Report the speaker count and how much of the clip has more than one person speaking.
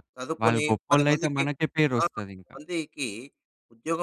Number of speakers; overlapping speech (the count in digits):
2, about 34%